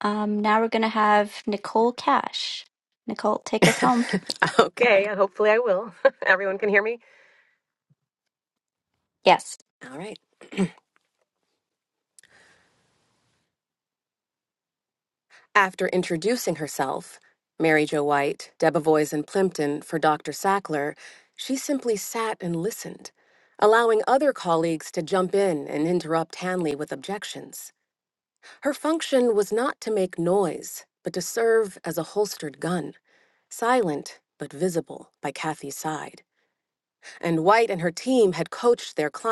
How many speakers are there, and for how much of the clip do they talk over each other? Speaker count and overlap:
2, no overlap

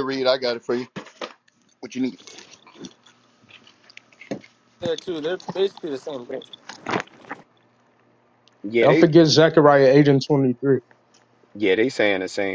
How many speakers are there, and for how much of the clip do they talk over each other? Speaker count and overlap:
4, about 2%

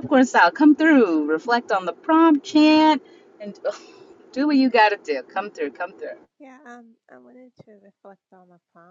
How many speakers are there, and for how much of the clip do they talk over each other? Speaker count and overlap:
2, no overlap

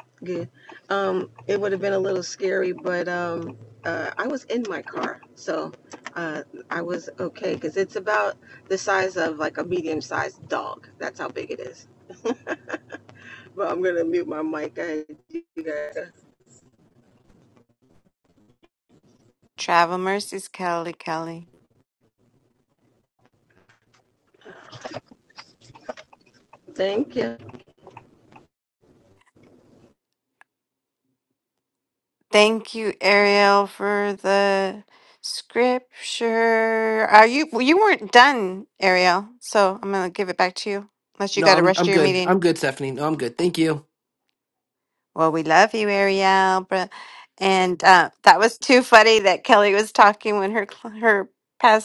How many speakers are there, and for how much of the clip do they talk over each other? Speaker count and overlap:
3, about 2%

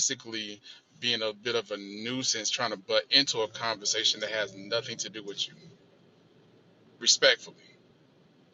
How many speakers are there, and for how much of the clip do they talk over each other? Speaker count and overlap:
1, no overlap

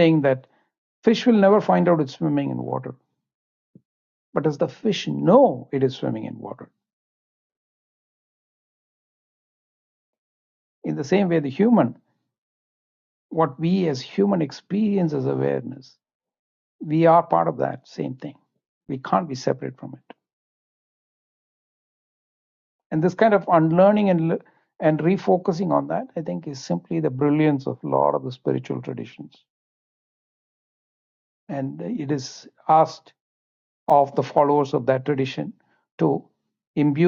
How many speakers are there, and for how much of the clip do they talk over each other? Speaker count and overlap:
1, no overlap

